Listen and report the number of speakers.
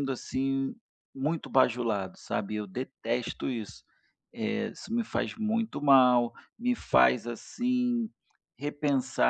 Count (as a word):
one